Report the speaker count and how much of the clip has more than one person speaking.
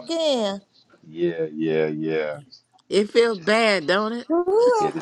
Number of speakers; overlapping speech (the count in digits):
3, about 5%